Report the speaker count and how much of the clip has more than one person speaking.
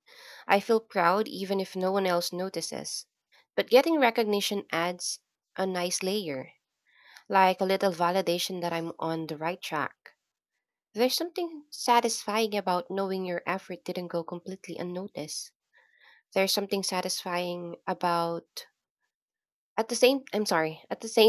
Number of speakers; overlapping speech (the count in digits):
1, no overlap